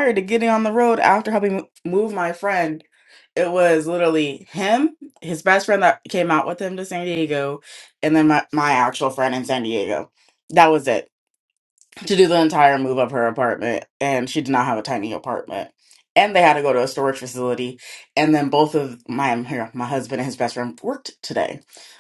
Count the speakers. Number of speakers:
1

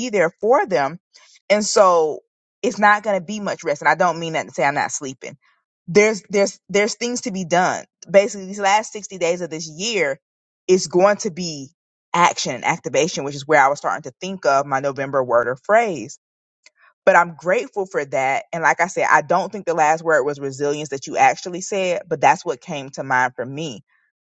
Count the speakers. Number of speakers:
1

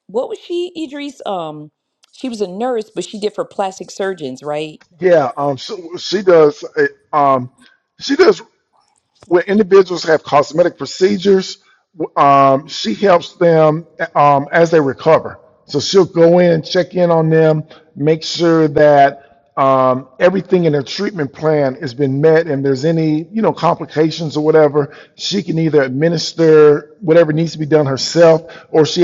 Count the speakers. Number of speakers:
2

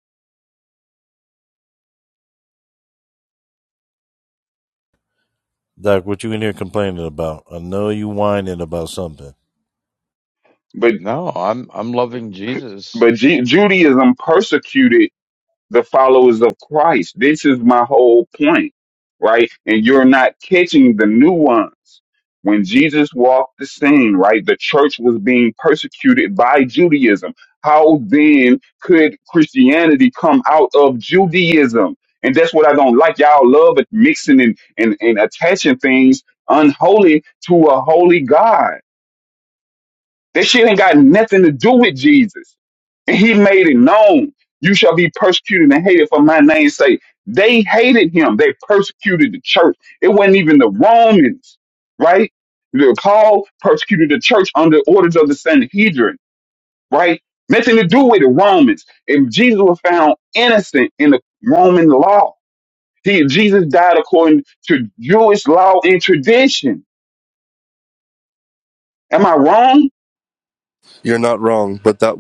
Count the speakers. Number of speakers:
4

